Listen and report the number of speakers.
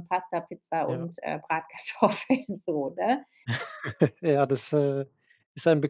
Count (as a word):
two